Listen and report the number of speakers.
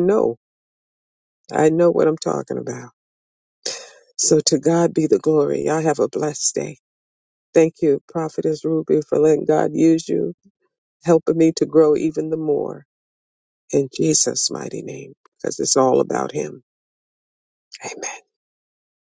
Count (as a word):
one